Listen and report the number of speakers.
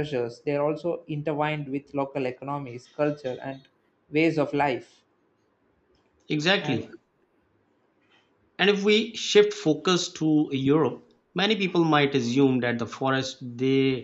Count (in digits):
2